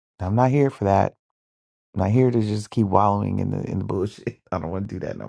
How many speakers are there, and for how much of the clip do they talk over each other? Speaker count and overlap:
1, no overlap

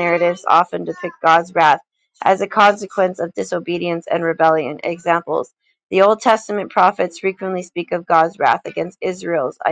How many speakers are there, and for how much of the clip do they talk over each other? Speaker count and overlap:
1, no overlap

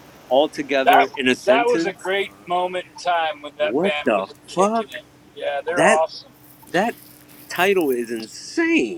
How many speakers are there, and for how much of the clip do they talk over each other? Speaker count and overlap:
2, about 26%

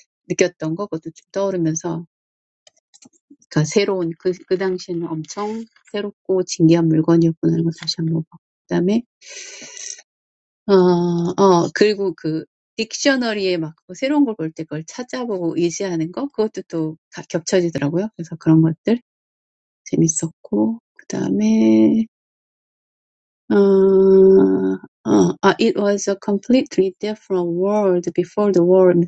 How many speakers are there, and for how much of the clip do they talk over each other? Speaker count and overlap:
1, no overlap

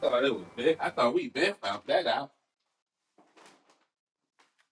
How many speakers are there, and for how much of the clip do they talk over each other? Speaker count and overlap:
1, no overlap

